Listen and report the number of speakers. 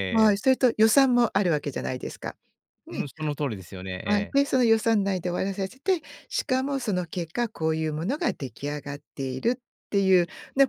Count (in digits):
2